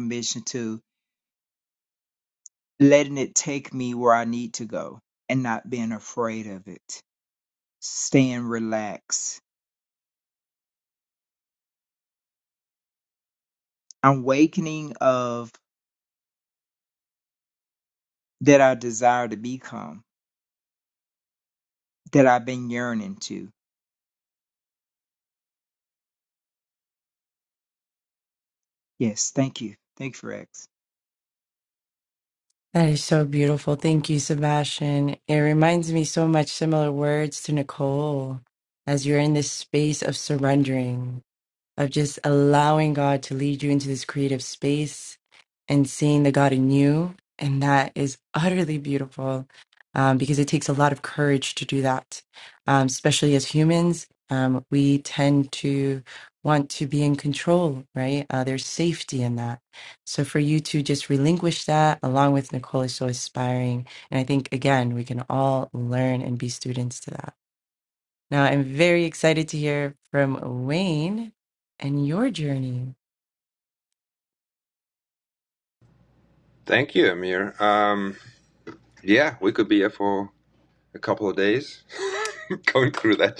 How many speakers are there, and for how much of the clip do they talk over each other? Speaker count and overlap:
three, no overlap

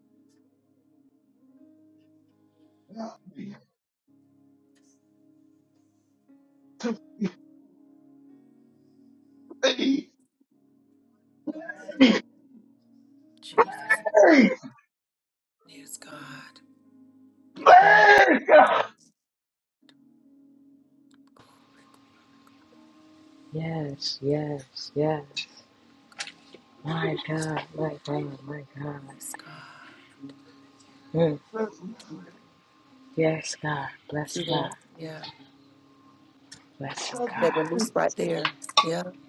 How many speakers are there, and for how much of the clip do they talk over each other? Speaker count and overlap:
three, about 3%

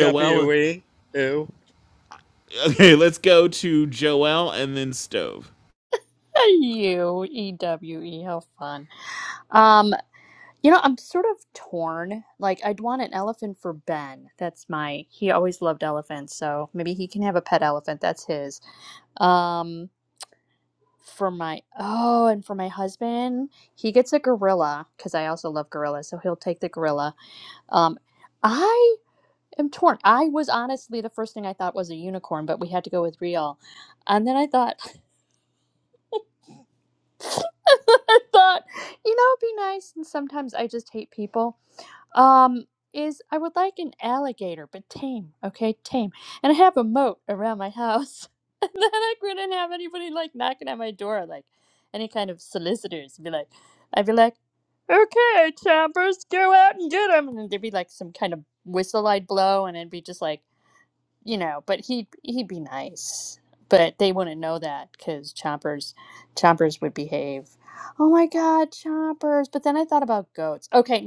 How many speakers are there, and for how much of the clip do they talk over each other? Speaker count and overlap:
three, about 1%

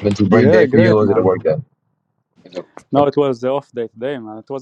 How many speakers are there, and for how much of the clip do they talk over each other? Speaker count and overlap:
two, about 26%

